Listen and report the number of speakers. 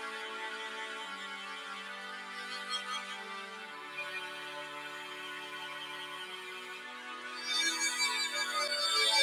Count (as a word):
zero